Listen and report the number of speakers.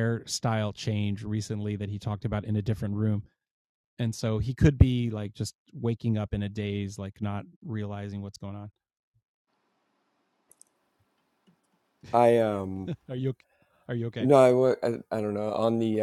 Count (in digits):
2